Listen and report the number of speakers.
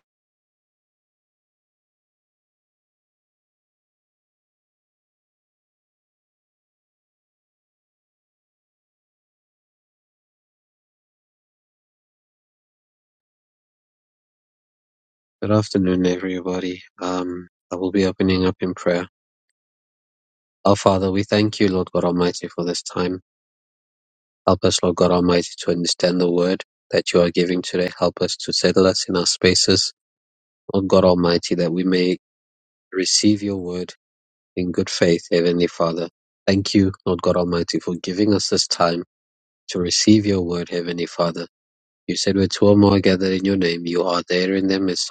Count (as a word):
one